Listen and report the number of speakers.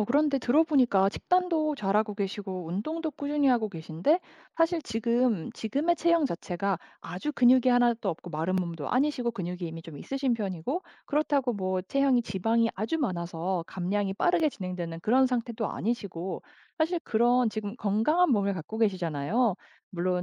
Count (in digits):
1